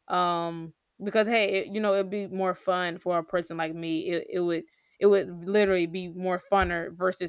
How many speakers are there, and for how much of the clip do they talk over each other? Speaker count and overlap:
one, no overlap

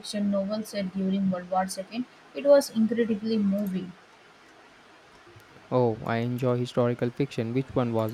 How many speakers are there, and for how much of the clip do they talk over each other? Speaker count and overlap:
two, no overlap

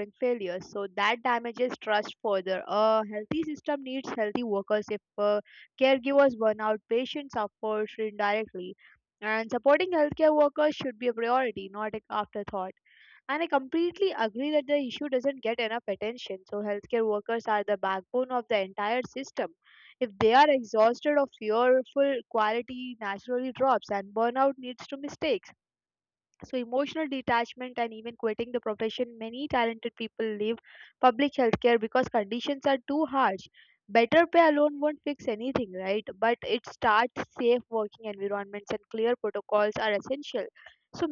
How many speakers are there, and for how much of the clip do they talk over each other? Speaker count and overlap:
one, no overlap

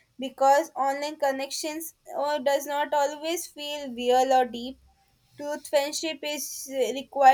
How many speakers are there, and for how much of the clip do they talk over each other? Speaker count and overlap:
one, no overlap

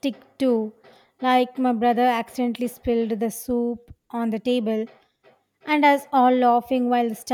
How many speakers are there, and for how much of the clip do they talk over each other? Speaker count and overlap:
one, no overlap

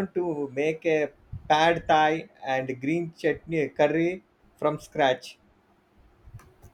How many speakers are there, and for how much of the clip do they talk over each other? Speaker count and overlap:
one, no overlap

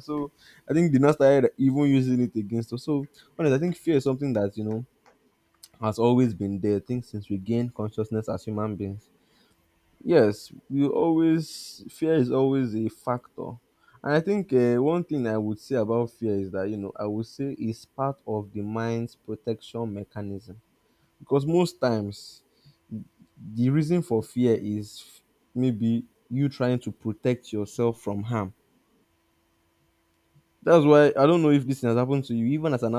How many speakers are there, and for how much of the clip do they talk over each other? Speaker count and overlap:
one, no overlap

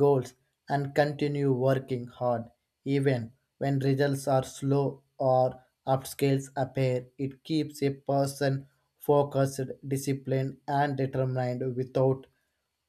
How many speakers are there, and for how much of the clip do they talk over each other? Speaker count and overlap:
one, no overlap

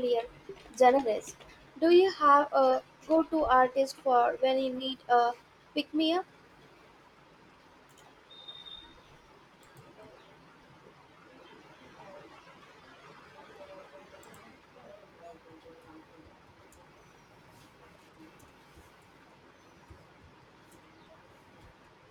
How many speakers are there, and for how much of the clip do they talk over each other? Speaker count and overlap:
one, no overlap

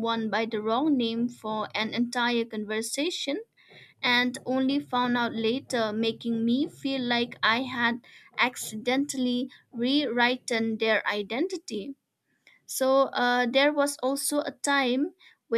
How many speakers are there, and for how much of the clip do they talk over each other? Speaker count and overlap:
one, no overlap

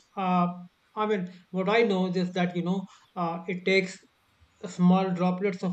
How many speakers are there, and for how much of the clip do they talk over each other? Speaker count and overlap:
one, no overlap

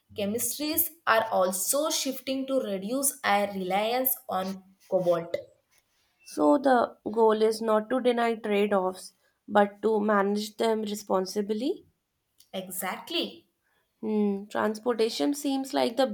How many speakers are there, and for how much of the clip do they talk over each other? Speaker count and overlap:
two, no overlap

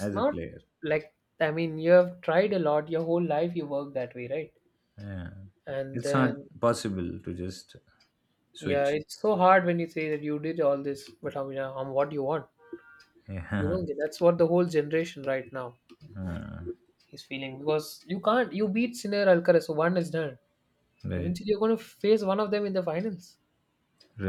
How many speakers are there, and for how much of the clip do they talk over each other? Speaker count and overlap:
two, about 6%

